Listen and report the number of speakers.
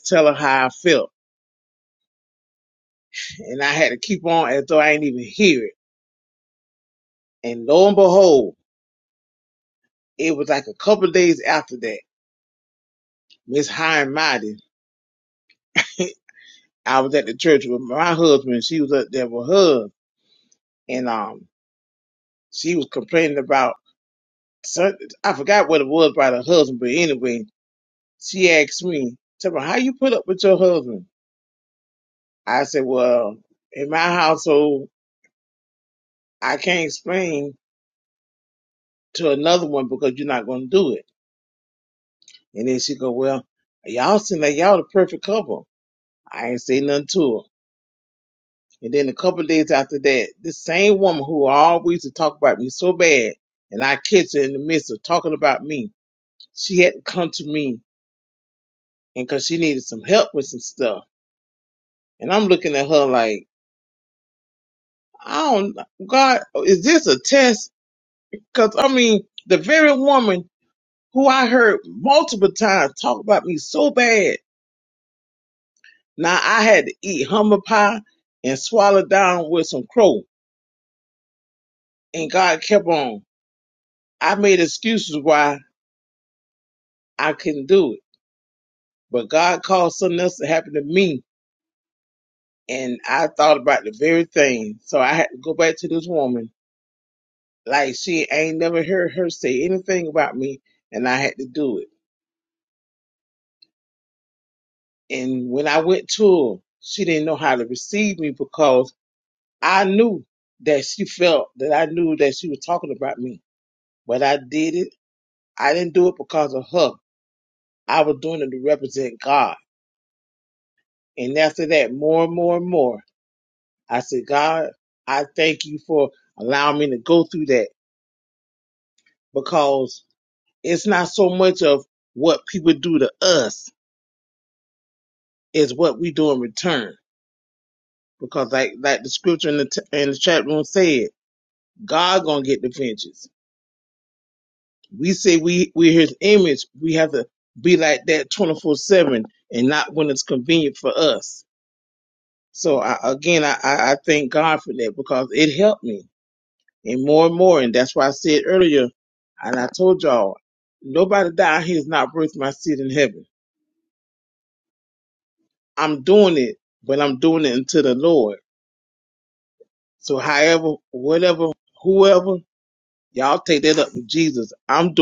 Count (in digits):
1